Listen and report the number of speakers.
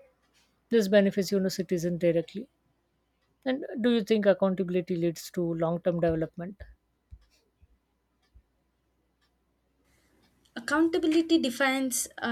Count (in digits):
2